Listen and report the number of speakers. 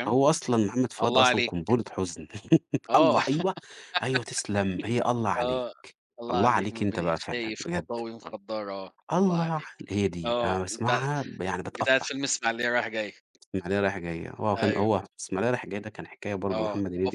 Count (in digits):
2